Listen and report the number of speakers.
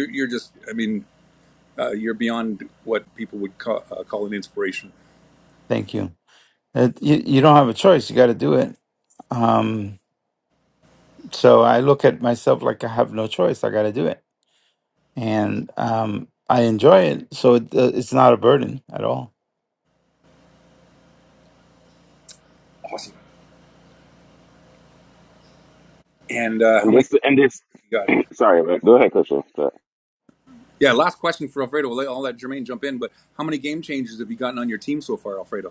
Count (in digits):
3